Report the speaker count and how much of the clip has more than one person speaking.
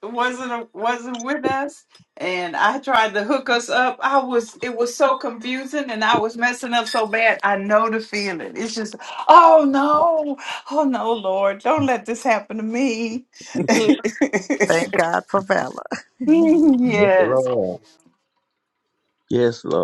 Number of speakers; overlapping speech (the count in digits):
3, about 2%